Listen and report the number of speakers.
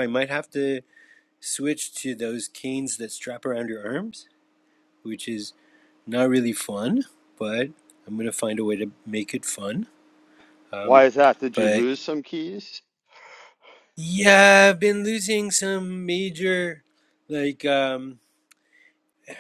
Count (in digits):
2